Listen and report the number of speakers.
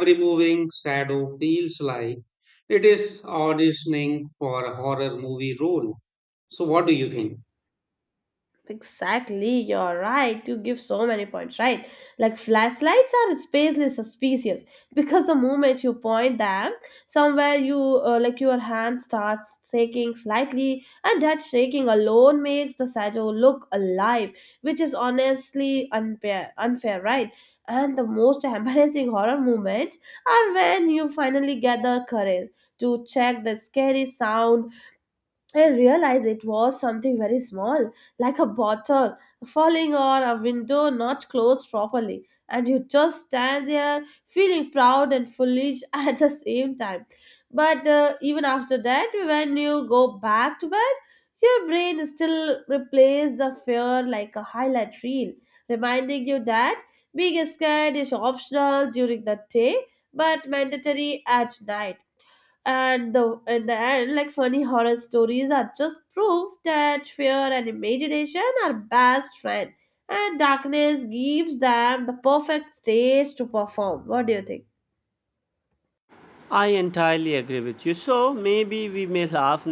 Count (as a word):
three